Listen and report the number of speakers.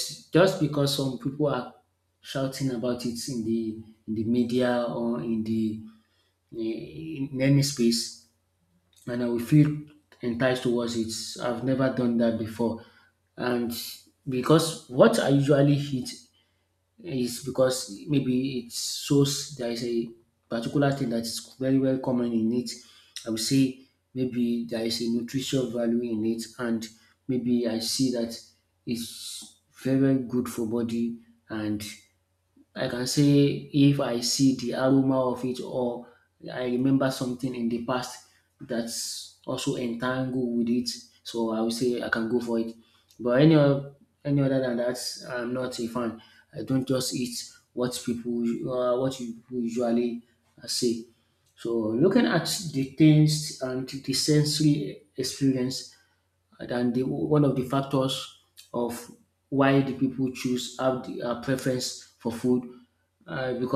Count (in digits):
1